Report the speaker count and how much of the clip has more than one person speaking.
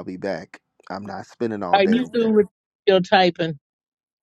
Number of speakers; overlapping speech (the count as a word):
two, about 14%